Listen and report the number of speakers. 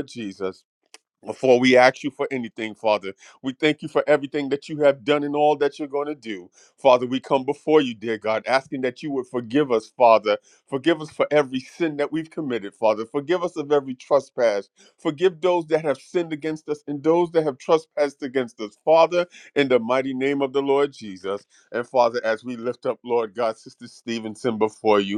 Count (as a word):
one